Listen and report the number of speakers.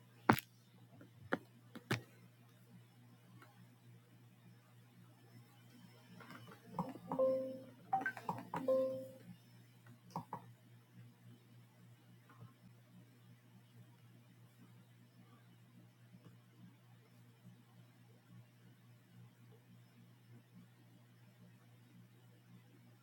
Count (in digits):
0